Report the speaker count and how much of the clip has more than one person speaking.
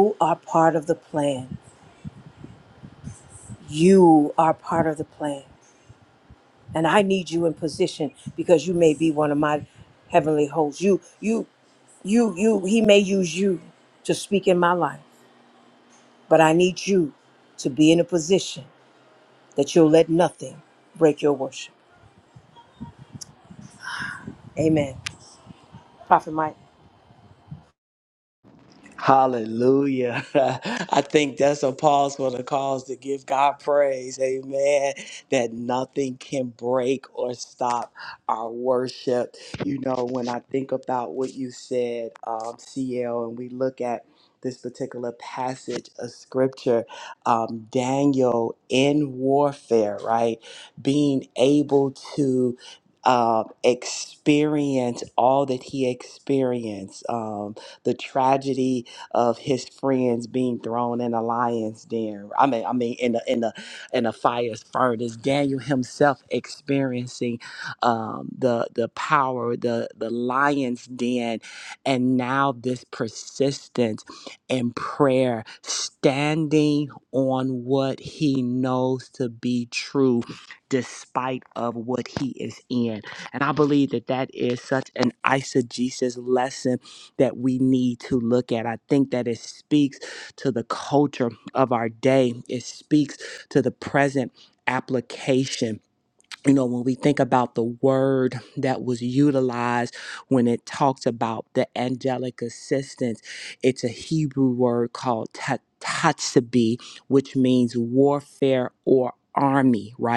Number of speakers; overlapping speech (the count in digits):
2, no overlap